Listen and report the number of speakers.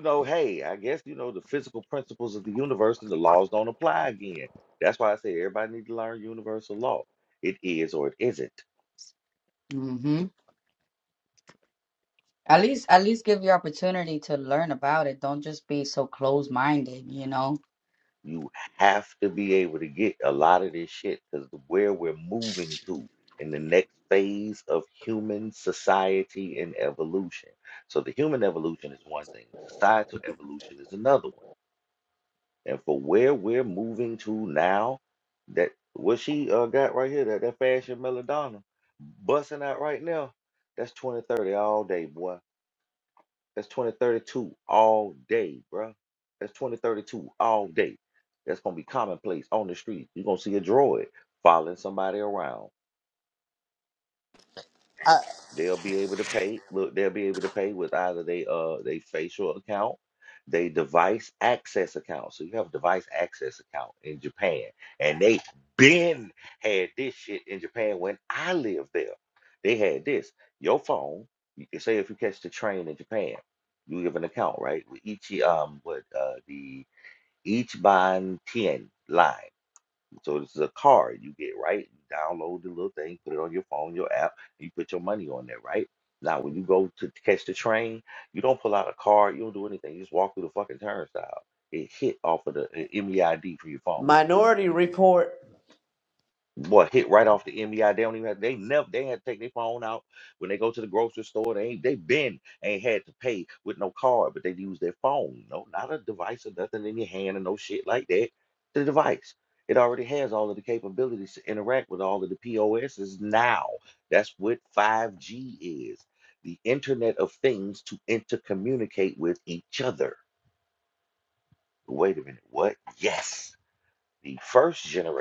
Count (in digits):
3